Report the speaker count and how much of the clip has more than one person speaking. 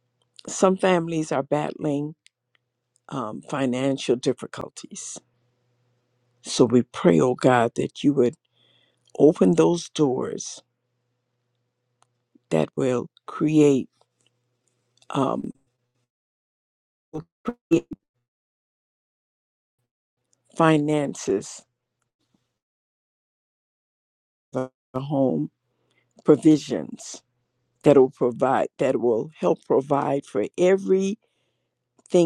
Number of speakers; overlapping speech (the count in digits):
1, no overlap